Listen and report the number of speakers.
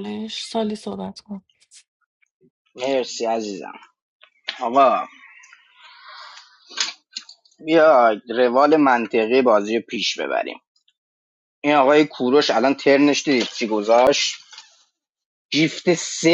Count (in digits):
2